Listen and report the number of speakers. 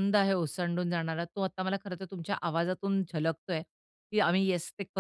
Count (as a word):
one